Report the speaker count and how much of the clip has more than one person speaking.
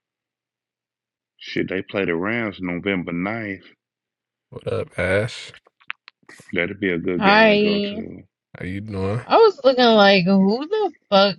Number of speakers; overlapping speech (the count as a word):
three, about 7%